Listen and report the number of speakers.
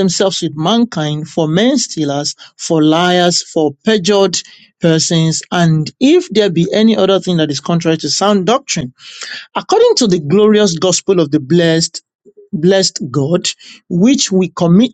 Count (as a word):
one